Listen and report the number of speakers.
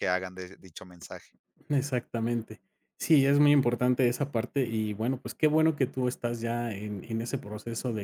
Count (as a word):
two